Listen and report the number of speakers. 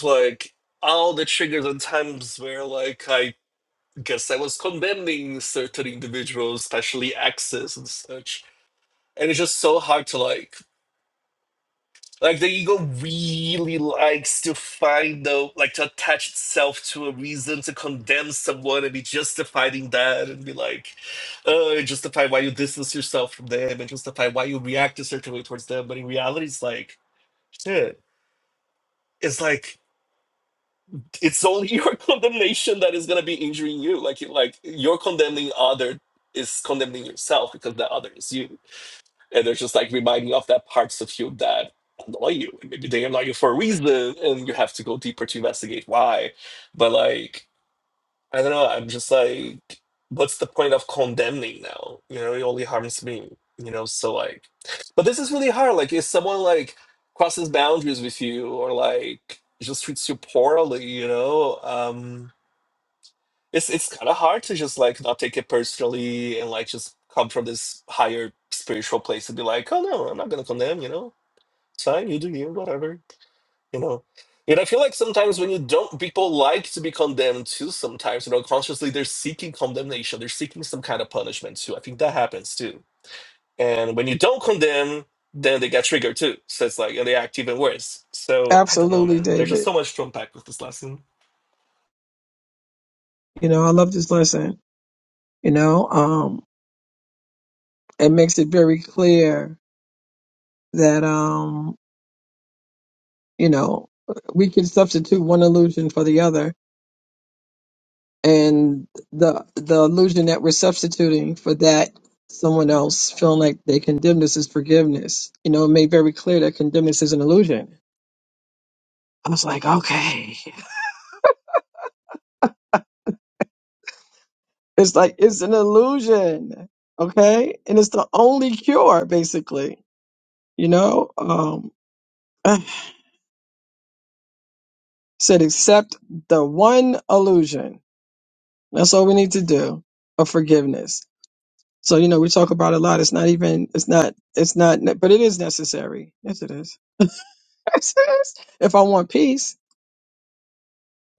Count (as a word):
two